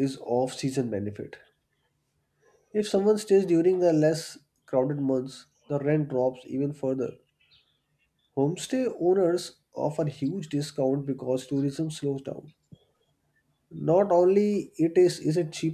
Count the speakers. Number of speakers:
one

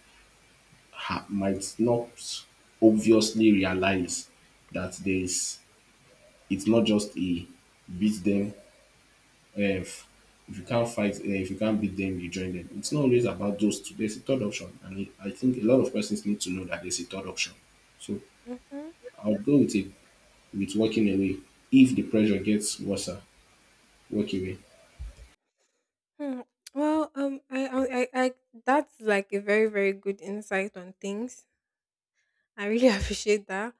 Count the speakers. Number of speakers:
two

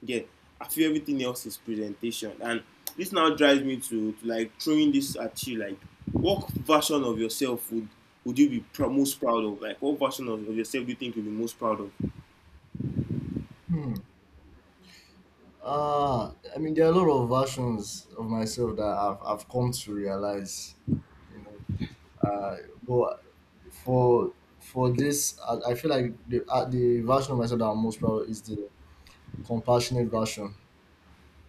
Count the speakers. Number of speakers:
two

